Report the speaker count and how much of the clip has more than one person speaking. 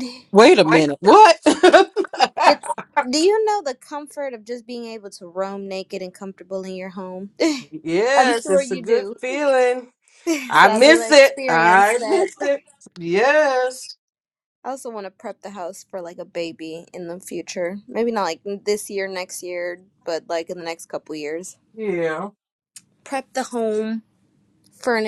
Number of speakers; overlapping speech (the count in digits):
2, about 11%